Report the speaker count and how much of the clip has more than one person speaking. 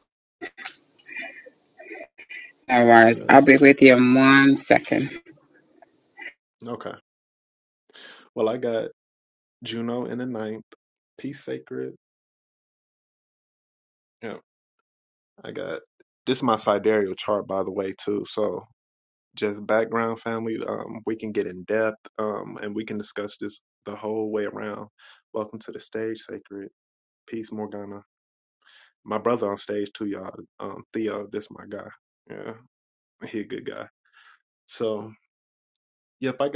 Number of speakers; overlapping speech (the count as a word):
two, about 1%